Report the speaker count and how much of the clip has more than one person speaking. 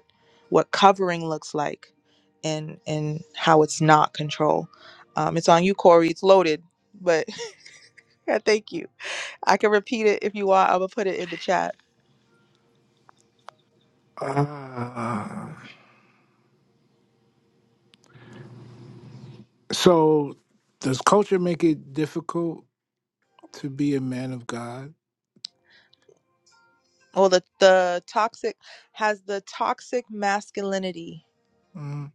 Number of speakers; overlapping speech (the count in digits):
2, no overlap